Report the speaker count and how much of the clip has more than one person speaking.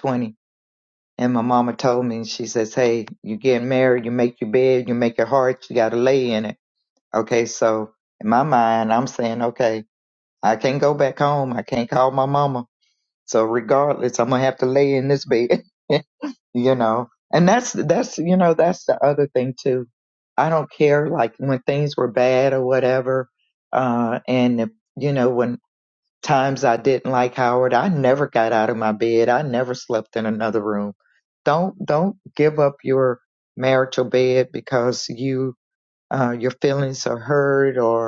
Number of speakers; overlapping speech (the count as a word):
one, no overlap